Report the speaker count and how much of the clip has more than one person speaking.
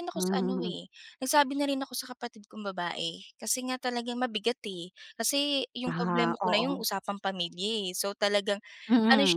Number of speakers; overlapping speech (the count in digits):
2, about 18%